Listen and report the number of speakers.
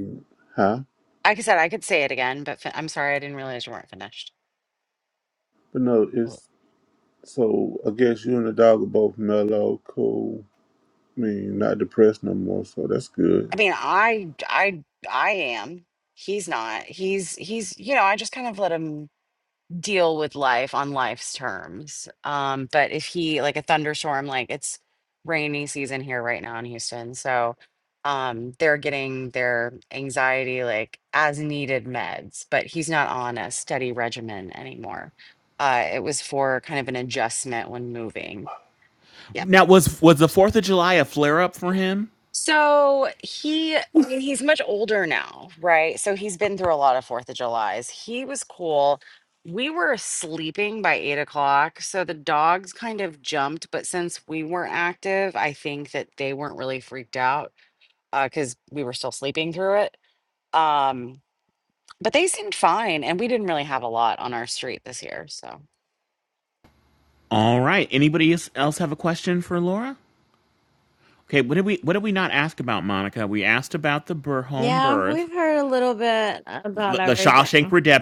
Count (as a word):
four